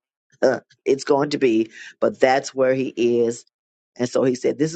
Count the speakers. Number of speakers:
one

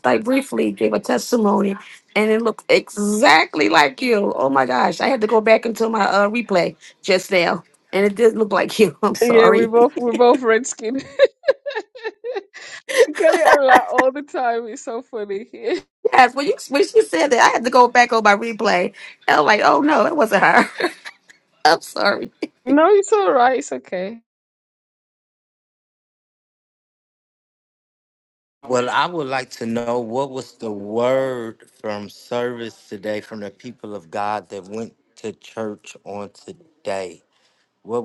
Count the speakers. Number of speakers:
three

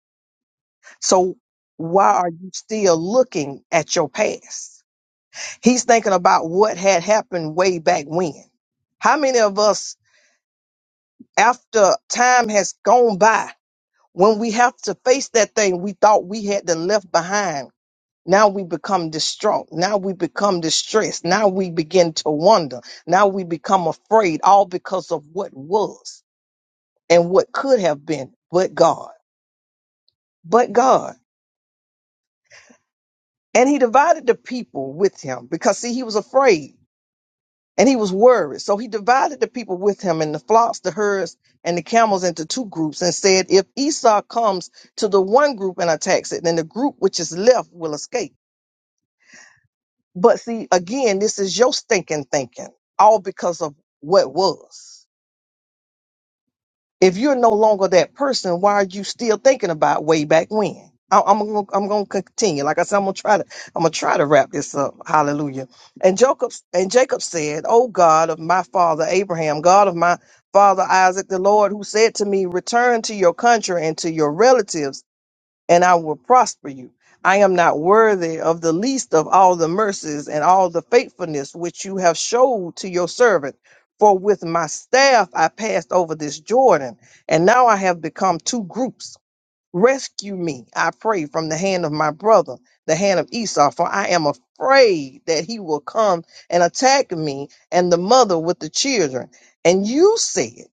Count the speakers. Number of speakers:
one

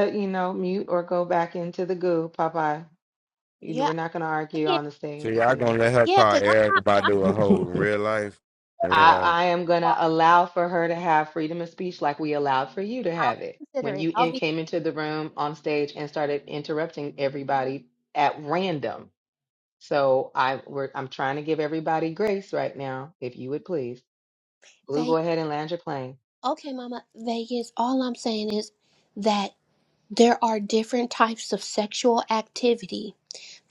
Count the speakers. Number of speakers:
three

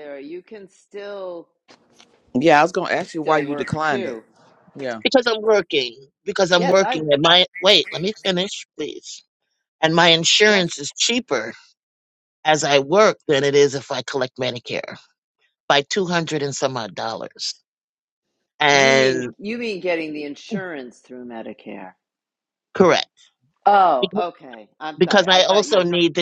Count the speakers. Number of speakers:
three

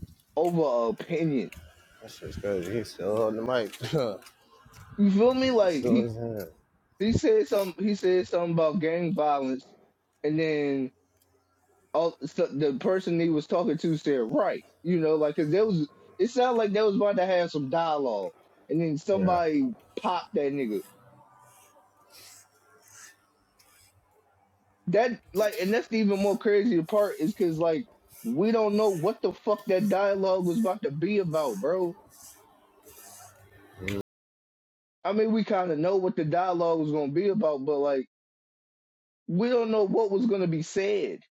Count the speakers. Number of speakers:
two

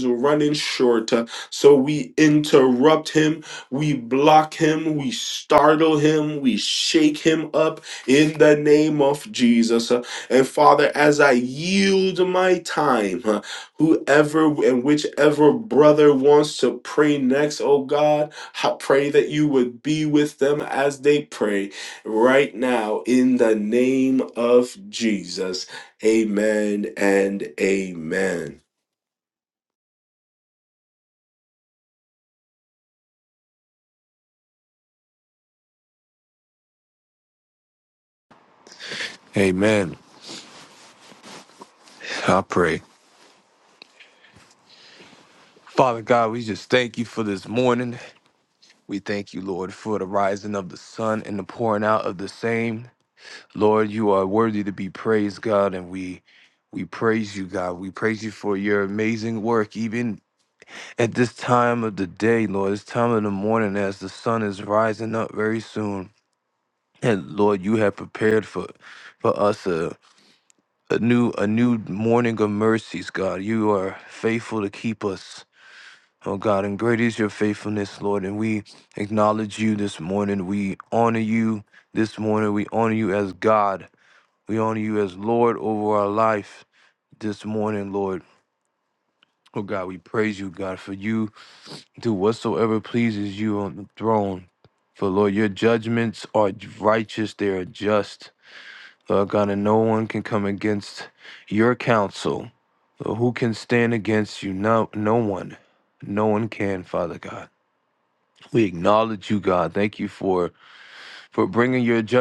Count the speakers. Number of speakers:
two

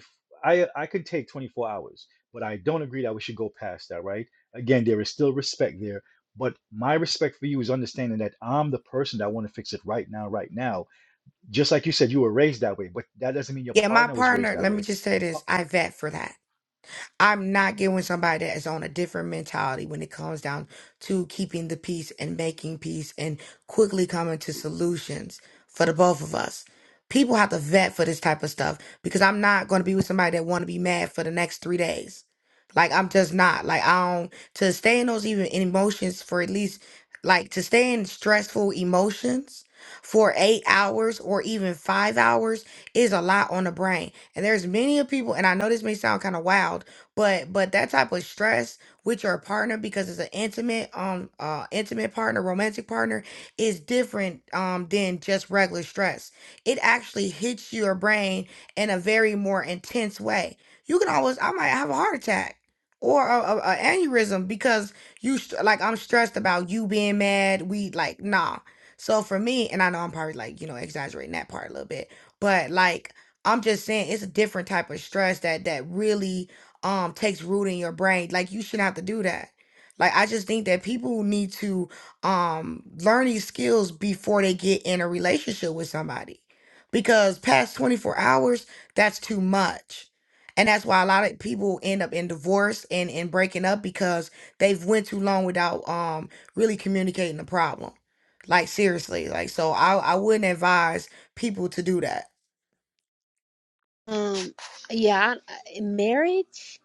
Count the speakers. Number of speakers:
three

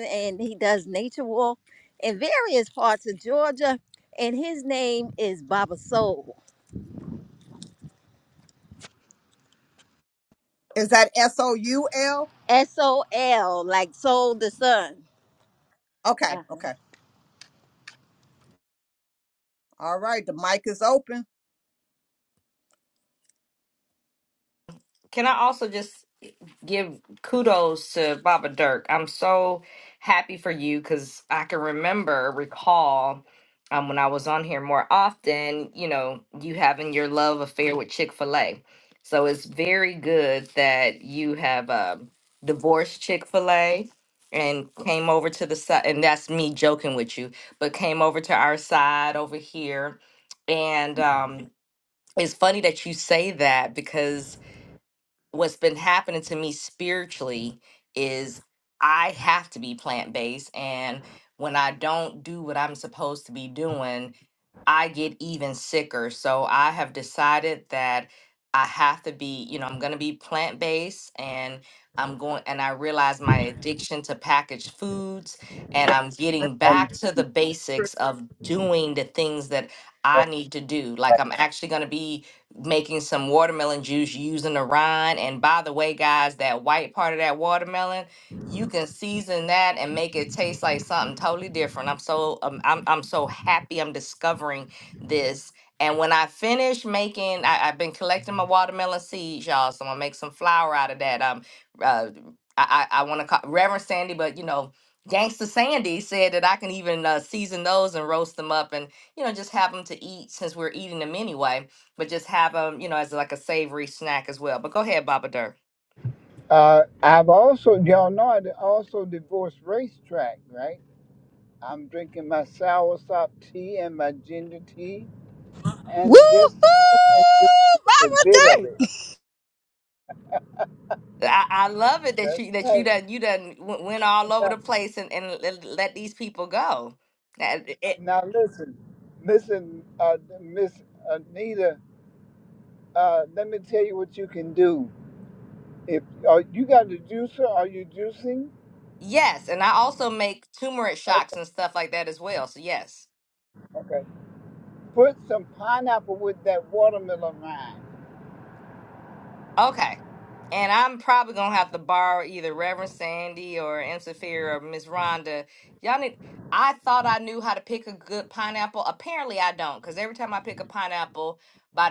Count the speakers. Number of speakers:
four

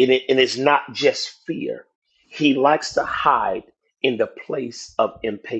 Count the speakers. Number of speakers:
one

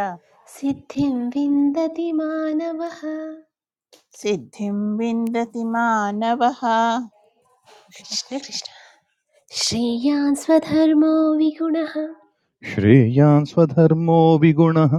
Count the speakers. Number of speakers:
three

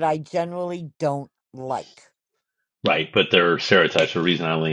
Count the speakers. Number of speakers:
two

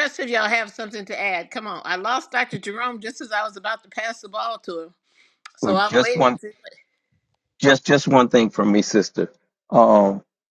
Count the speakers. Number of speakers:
two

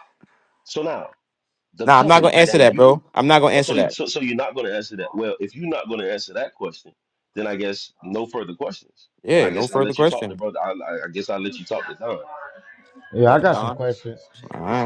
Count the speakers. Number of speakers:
three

